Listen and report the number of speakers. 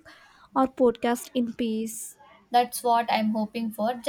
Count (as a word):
two